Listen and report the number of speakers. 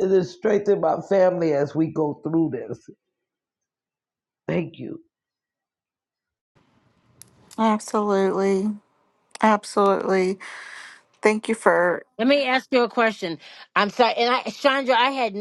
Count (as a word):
three